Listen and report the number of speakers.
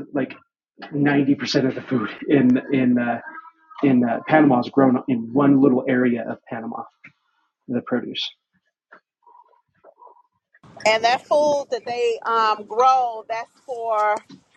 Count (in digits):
2